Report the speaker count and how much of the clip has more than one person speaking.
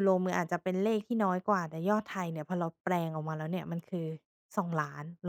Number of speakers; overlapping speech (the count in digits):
1, no overlap